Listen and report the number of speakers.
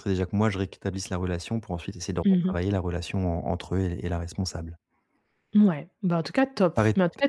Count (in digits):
2